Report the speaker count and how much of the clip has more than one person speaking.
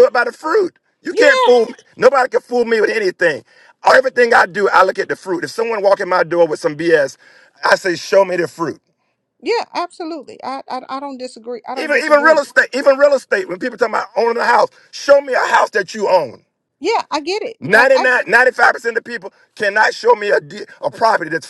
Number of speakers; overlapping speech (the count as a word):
two, about 7%